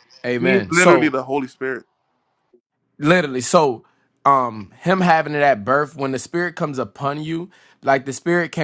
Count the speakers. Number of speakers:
two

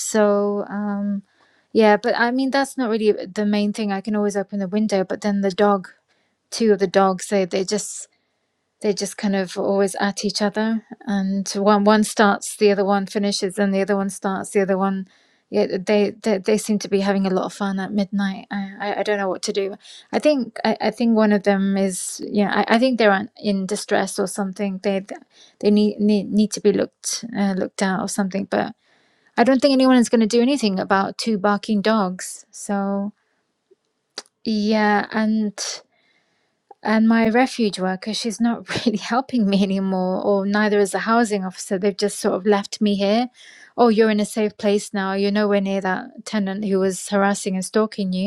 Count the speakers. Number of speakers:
one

